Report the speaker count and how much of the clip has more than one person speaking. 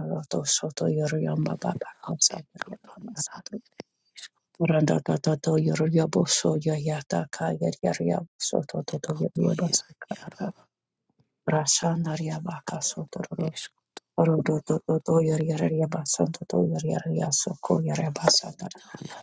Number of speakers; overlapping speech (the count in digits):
2, about 12%